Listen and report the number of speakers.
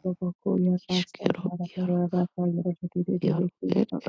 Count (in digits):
2